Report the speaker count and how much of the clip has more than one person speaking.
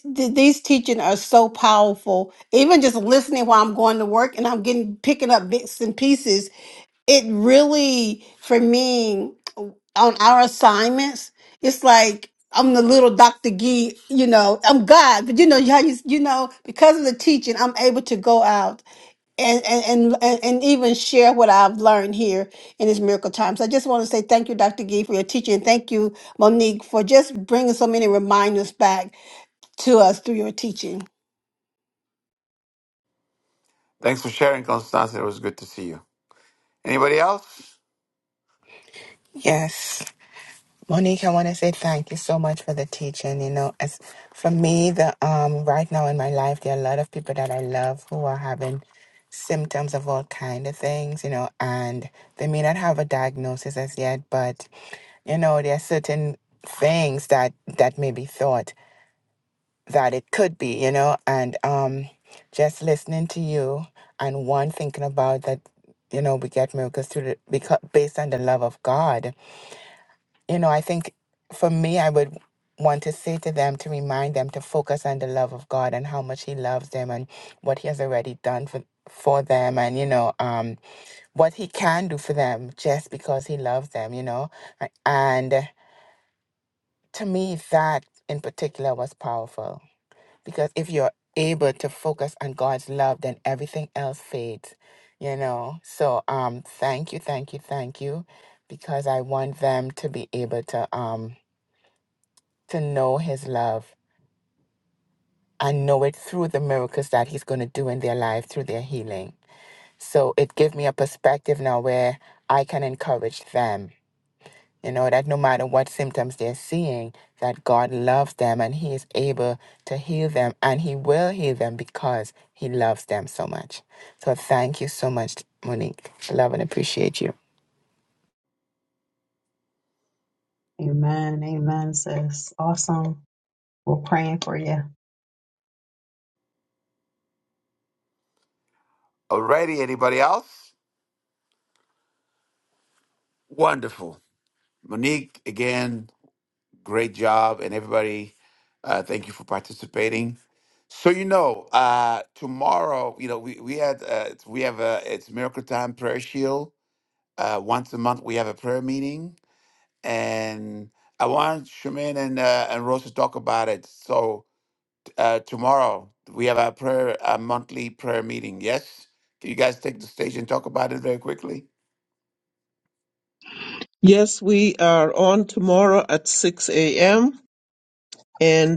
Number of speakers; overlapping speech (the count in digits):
5, no overlap